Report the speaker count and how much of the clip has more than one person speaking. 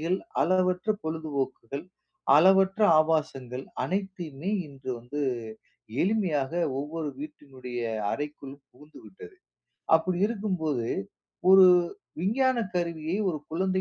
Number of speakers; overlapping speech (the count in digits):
1, no overlap